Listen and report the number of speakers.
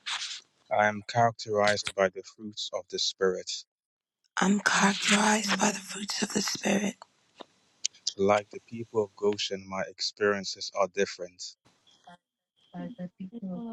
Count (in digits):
3